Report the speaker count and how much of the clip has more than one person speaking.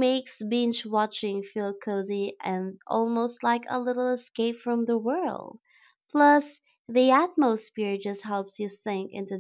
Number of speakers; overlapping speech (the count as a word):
one, no overlap